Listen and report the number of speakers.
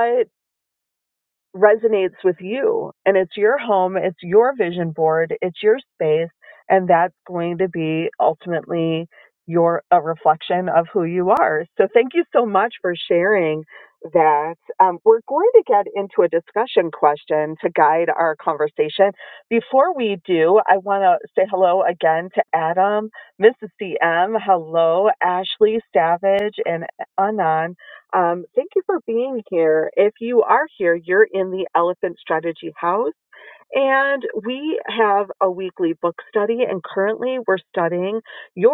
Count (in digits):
1